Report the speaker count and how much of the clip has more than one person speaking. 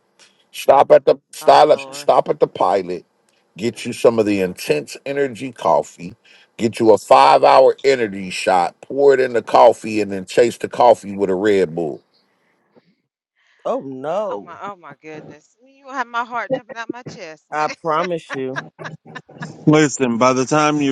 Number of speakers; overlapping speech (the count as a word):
four, about 5%